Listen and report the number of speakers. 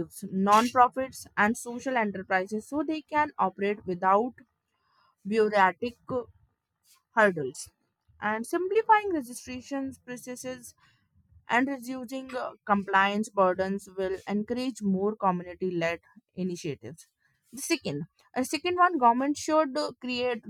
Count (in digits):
1